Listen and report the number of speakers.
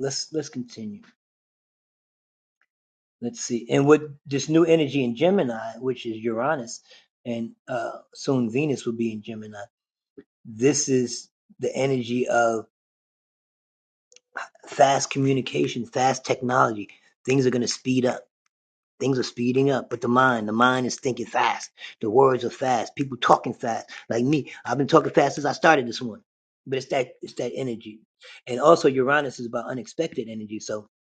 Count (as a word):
one